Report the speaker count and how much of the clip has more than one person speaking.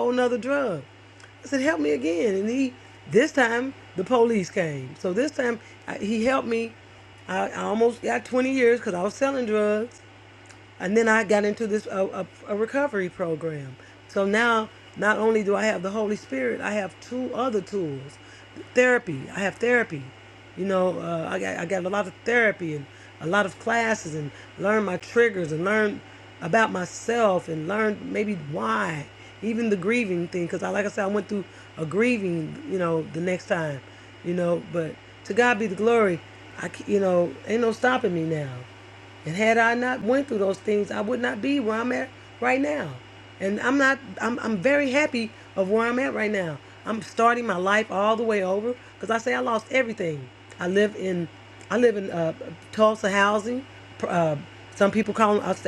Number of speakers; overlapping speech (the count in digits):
1, no overlap